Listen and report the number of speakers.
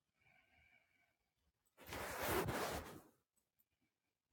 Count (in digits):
0